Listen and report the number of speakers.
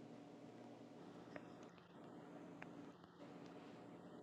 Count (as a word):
zero